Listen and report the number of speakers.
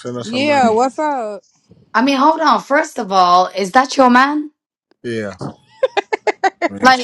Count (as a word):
three